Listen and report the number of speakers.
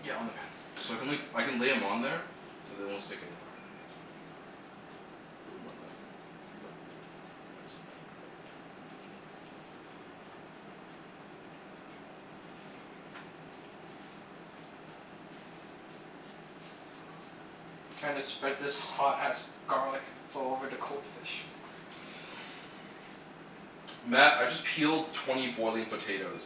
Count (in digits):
2